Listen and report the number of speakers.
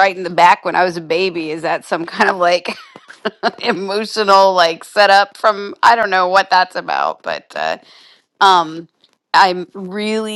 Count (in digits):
1